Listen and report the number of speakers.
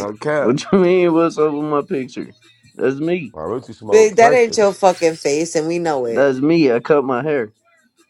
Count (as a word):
three